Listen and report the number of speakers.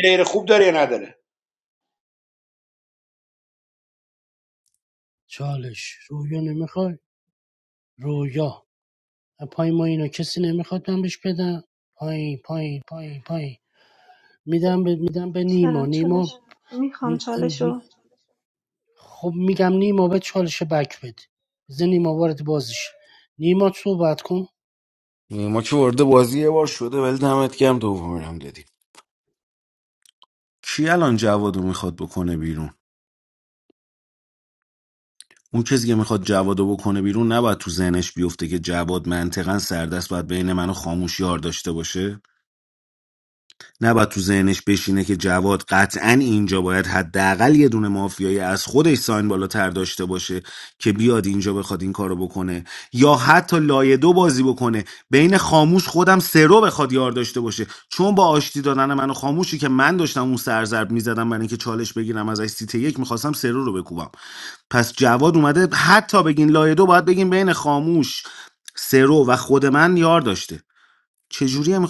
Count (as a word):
four